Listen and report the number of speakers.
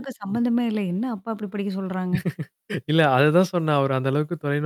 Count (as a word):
two